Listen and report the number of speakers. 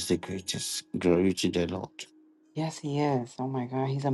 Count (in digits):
2